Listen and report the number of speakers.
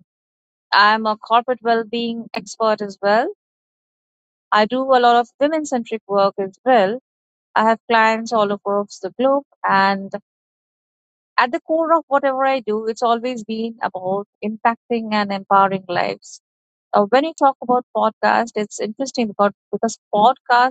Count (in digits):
1